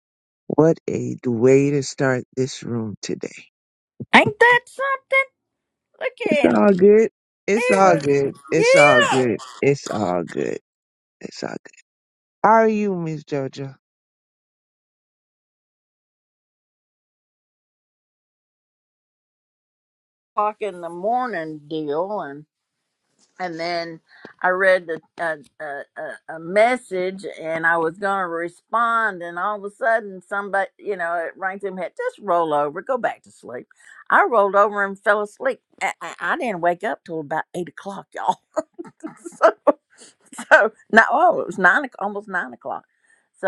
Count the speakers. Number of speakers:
two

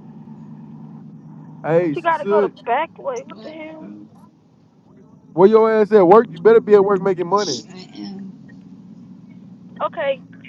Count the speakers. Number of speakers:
three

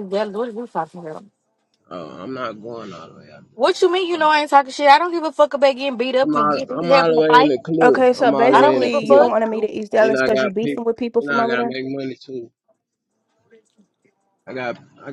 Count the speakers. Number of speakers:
three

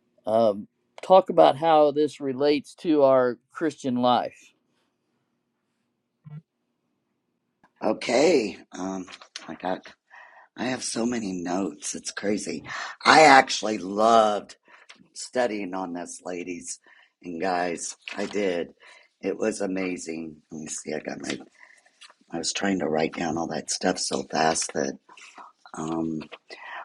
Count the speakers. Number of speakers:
two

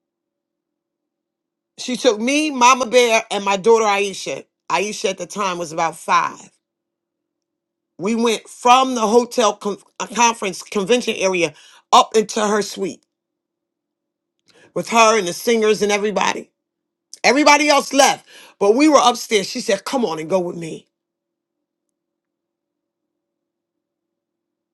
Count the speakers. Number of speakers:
one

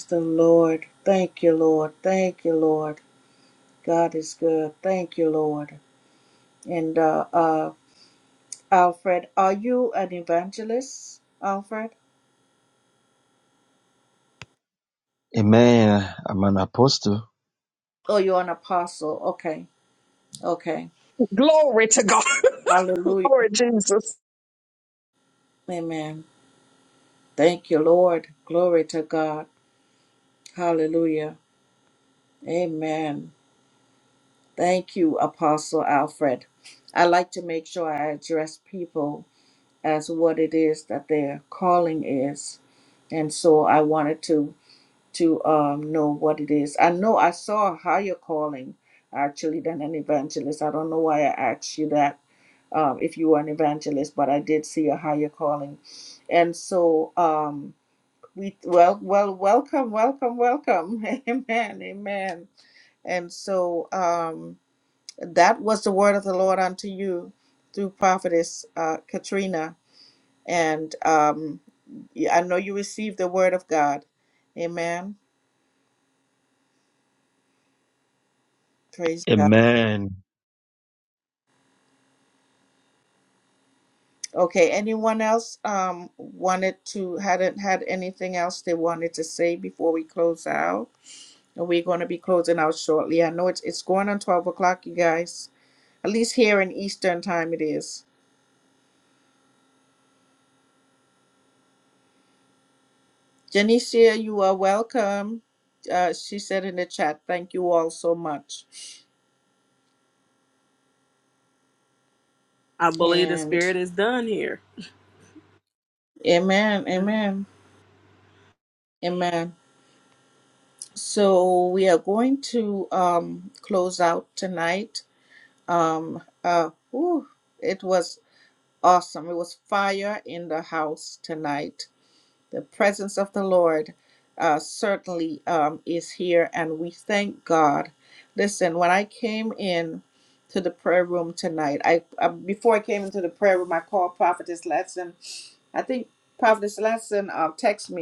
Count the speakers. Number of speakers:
four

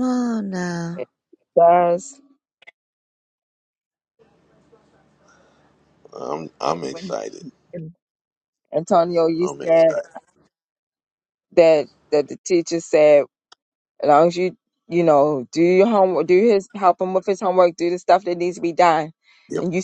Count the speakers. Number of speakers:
three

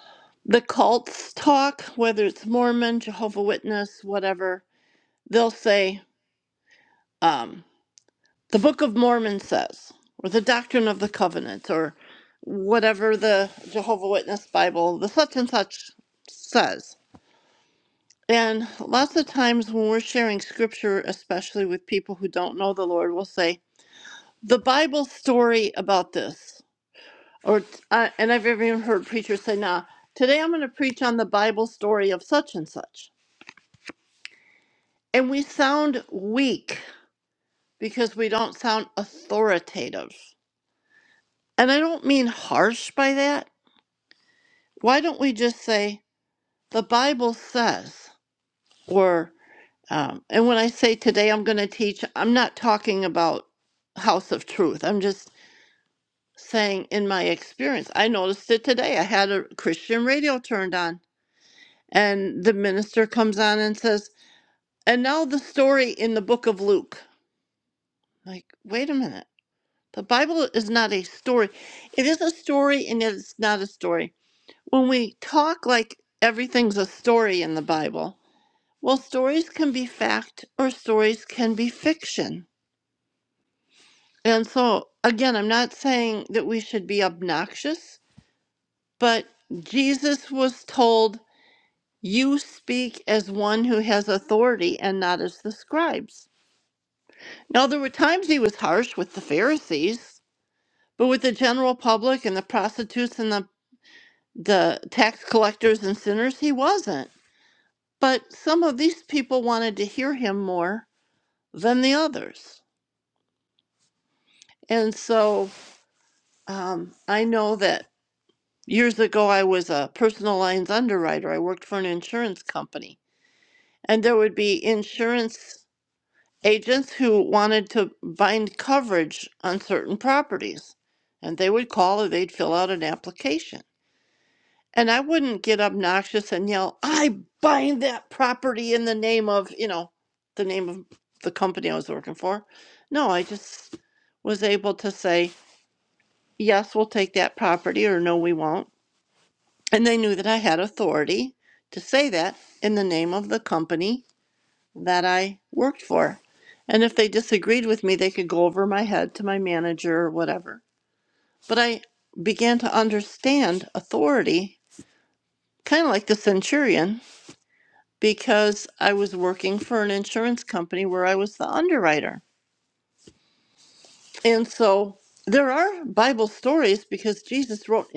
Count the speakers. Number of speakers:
one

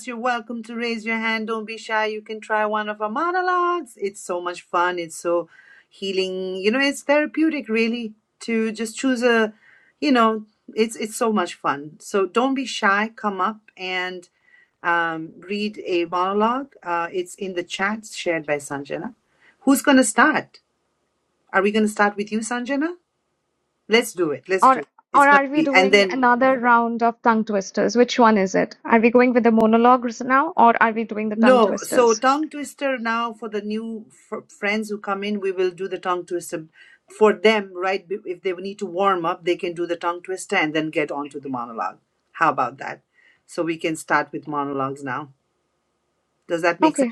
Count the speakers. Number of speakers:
two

